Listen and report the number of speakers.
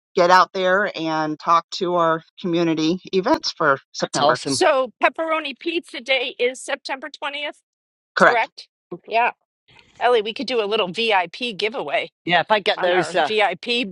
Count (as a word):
three